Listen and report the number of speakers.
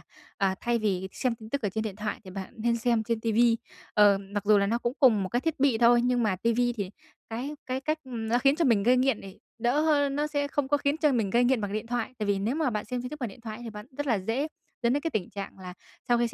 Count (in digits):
1